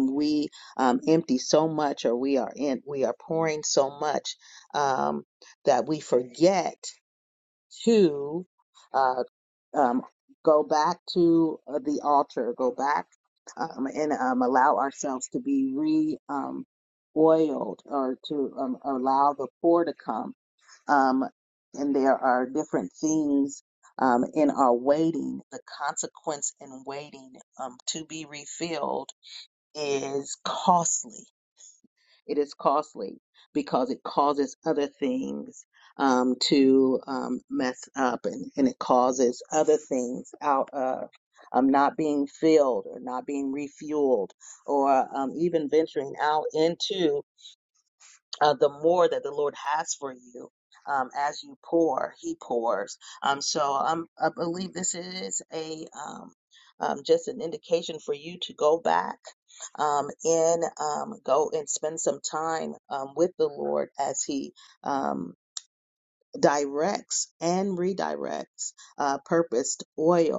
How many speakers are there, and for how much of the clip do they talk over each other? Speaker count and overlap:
one, no overlap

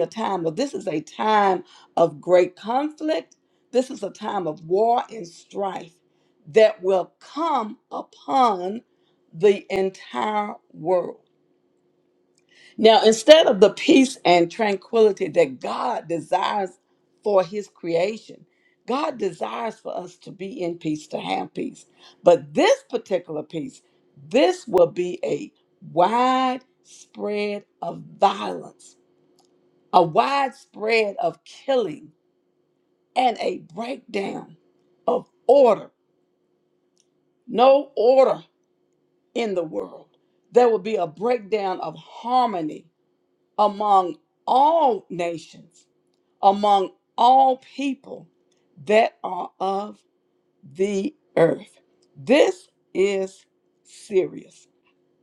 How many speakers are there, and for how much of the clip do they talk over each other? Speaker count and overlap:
one, no overlap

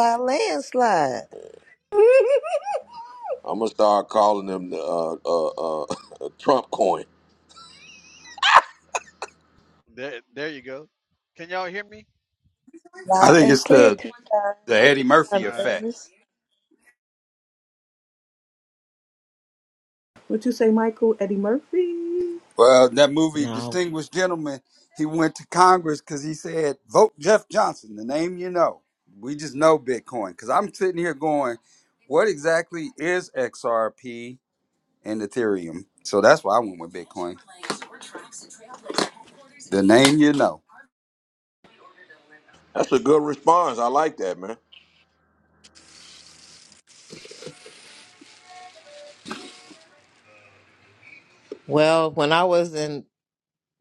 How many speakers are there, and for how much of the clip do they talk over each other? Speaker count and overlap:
six, about 4%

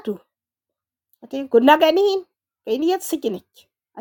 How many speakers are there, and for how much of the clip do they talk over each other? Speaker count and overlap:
one, no overlap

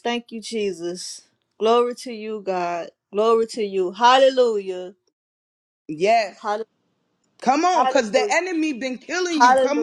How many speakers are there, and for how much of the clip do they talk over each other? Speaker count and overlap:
two, about 11%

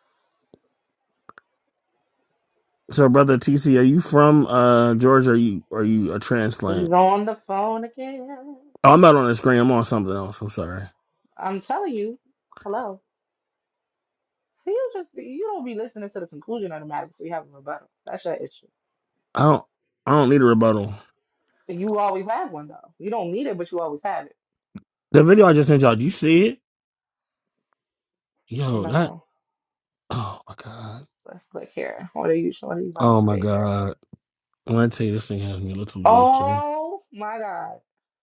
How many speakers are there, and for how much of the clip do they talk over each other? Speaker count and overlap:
two, about 5%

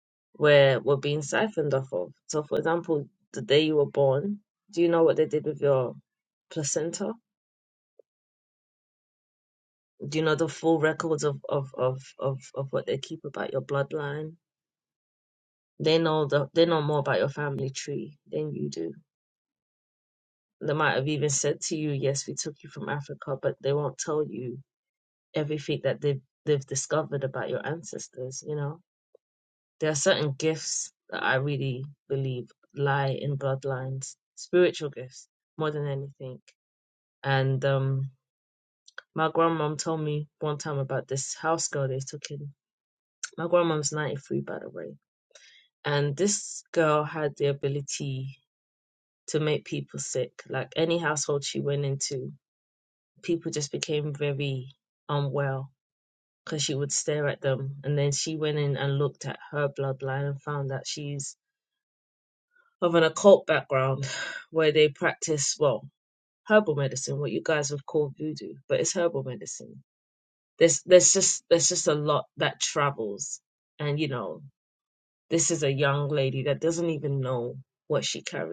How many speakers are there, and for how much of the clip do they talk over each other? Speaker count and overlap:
one, no overlap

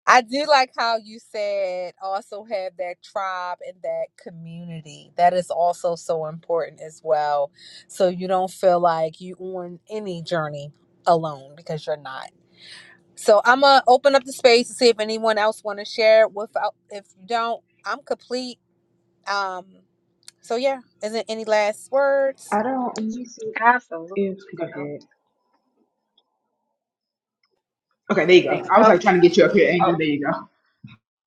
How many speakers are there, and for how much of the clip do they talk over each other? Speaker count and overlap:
three, about 2%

